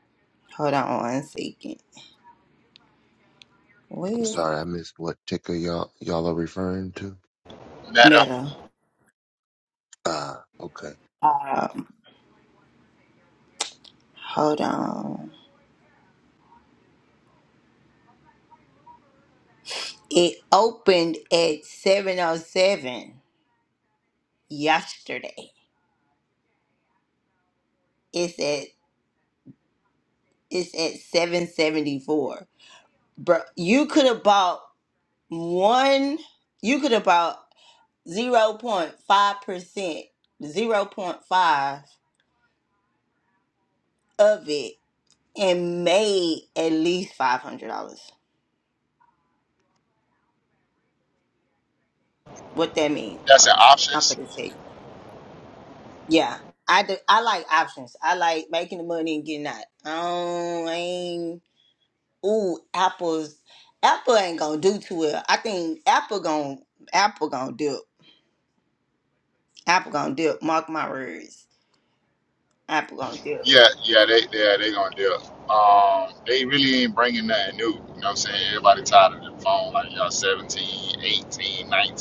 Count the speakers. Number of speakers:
3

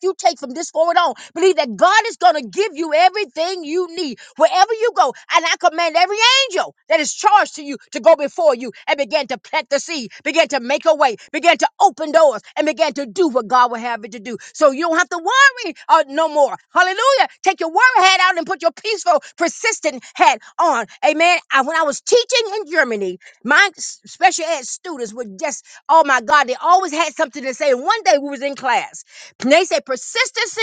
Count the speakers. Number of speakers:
1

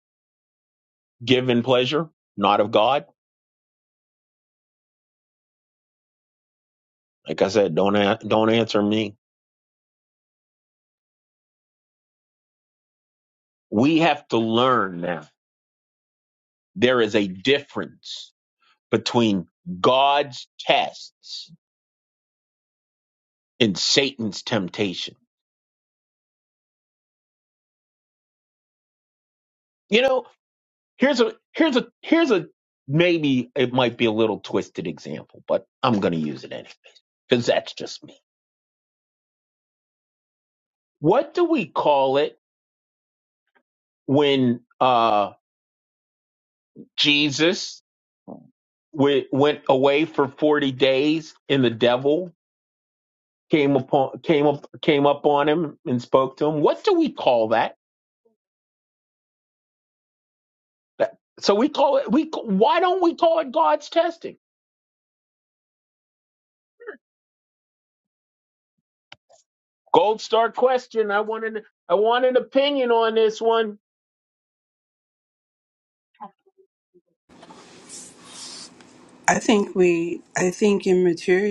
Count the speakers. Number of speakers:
2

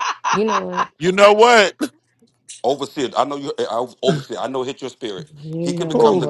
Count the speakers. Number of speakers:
3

